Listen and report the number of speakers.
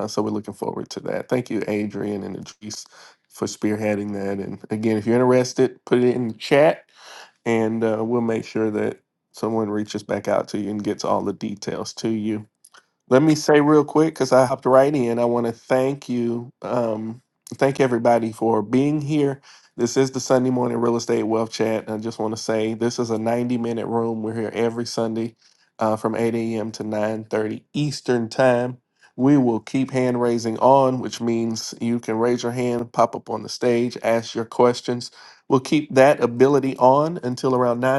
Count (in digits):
1